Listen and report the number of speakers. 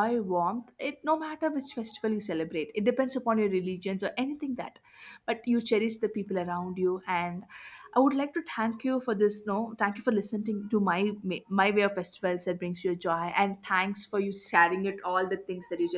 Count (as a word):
one